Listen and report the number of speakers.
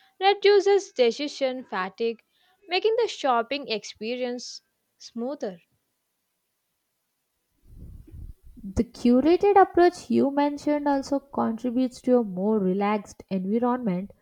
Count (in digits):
2